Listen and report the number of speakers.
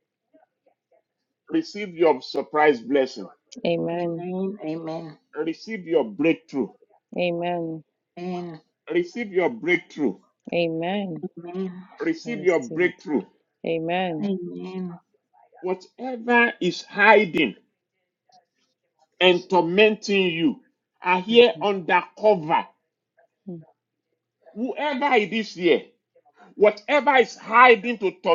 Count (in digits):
3